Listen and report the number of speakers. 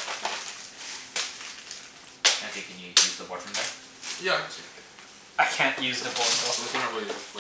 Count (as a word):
three